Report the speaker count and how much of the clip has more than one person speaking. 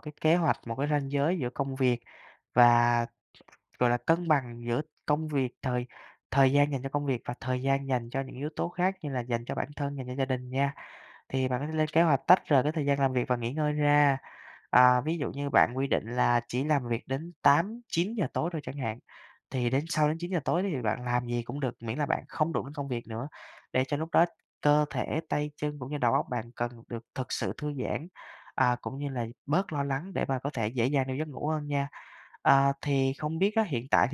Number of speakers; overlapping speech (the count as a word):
one, no overlap